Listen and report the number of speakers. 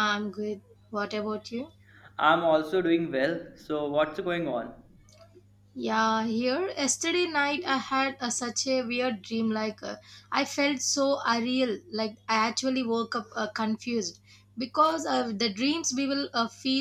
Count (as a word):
two